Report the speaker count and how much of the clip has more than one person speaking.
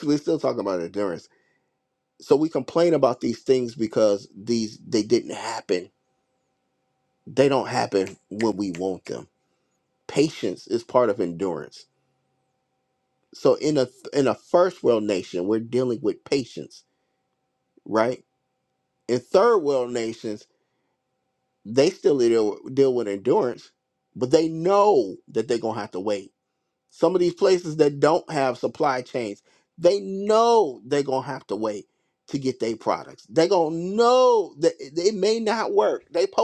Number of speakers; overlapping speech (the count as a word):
one, no overlap